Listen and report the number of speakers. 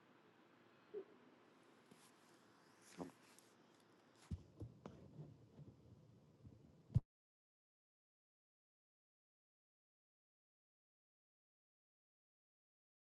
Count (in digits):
0